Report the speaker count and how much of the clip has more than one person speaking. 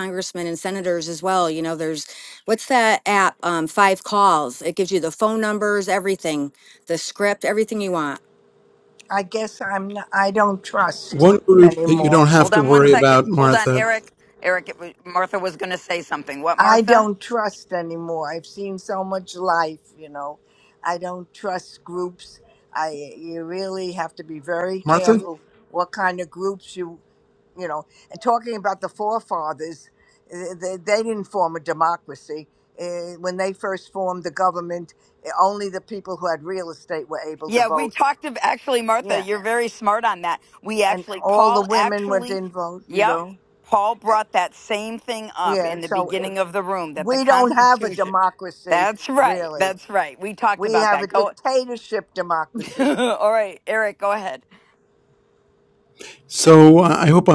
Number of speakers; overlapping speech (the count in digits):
4, about 17%